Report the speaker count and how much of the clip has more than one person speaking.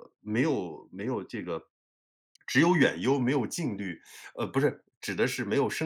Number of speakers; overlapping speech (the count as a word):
one, no overlap